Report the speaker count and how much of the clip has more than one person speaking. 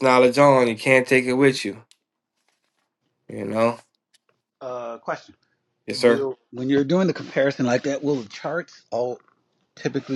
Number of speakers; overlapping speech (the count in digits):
2, about 3%